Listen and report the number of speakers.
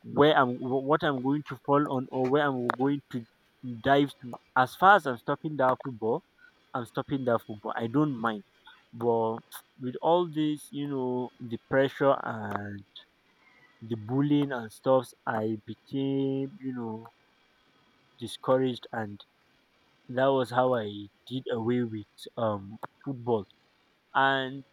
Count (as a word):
one